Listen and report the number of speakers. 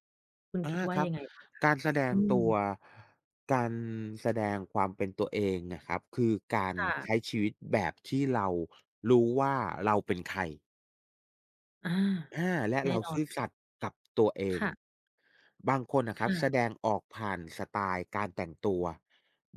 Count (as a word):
two